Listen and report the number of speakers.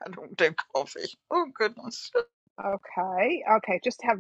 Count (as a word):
two